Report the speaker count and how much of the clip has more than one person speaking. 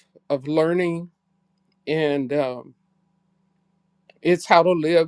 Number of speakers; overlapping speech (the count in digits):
1, no overlap